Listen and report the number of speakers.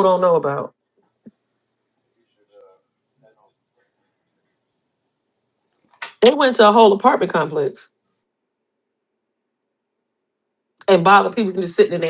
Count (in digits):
1